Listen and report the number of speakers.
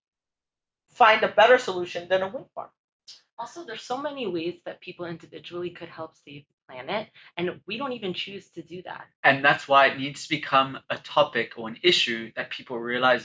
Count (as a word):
three